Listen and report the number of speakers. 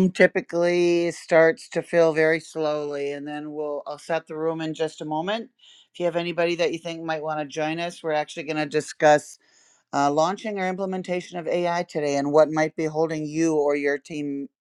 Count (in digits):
1